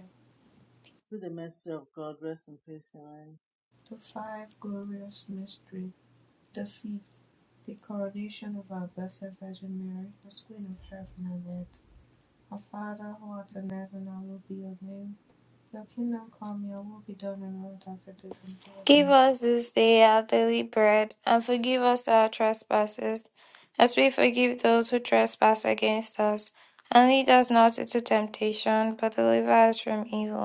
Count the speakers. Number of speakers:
3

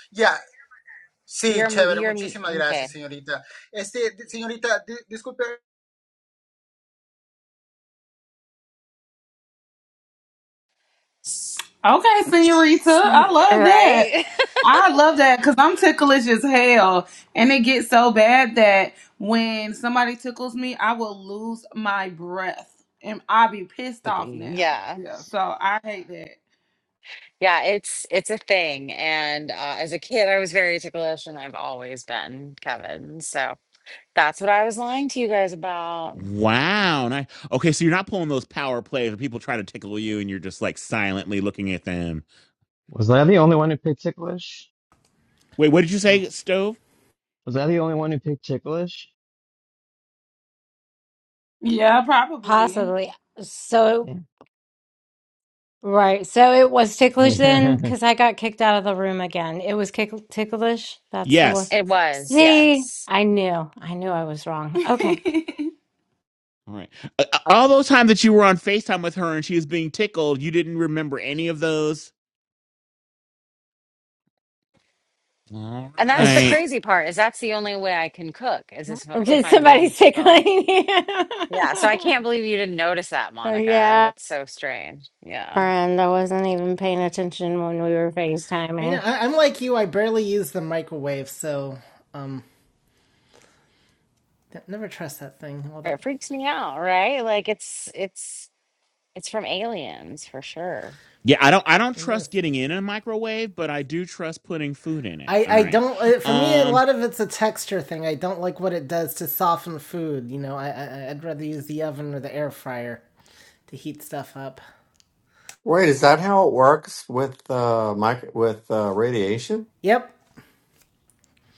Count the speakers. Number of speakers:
8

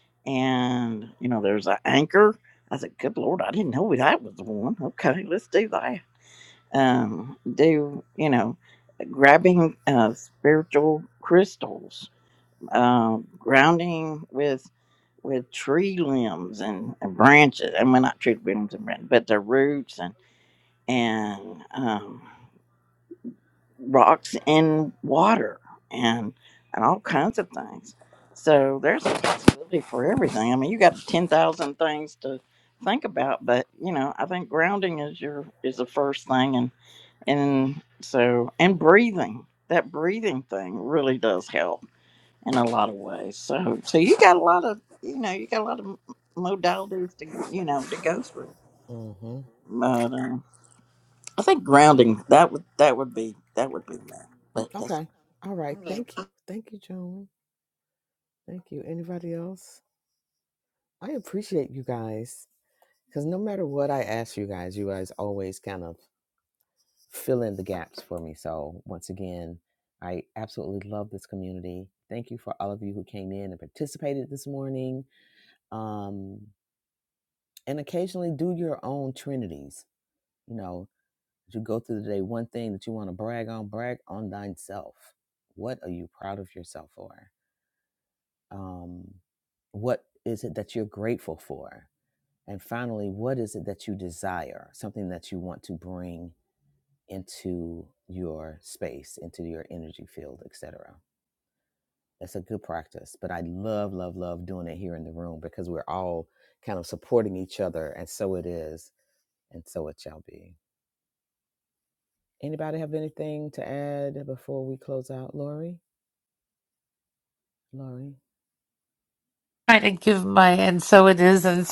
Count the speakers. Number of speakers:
3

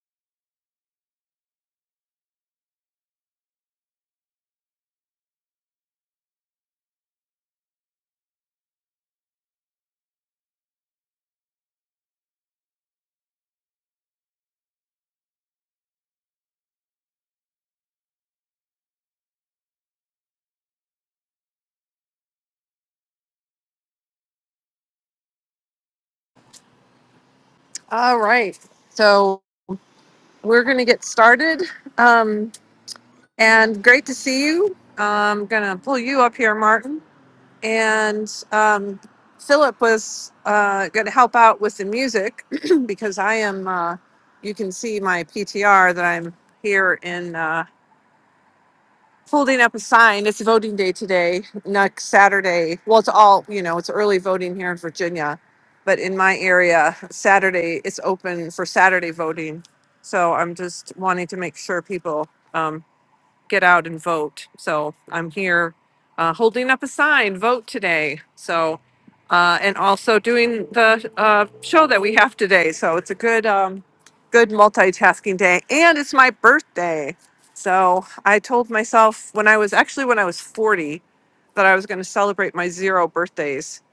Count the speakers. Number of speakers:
1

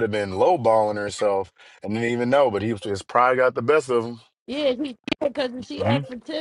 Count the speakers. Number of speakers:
2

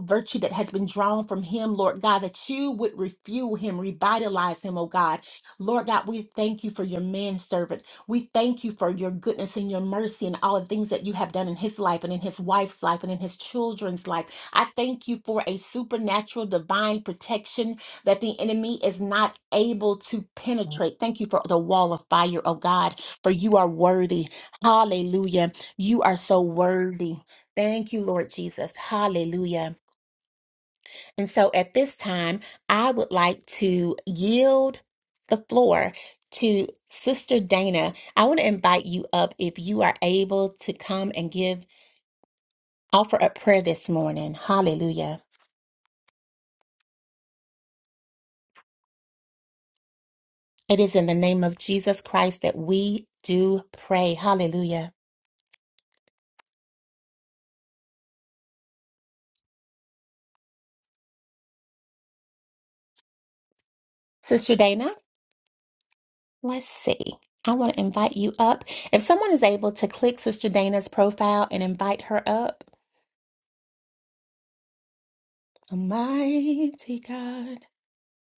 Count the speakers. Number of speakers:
1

